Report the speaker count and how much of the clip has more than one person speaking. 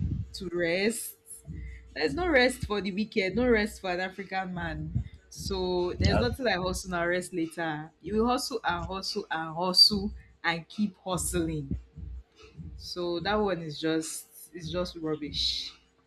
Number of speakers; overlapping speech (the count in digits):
1, no overlap